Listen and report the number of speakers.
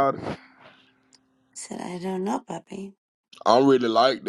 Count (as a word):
two